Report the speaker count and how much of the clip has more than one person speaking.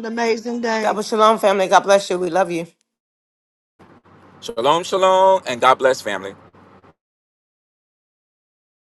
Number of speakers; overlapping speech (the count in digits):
3, about 2%